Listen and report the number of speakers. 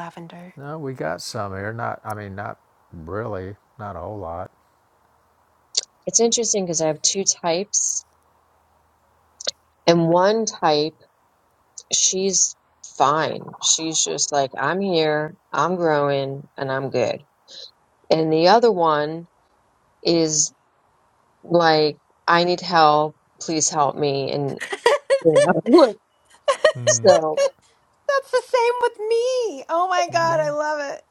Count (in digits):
3